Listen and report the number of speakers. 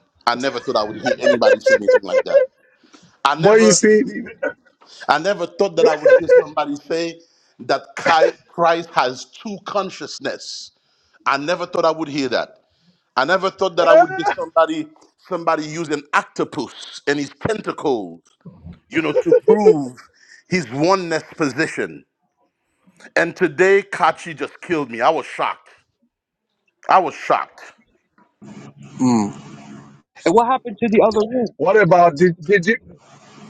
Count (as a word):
three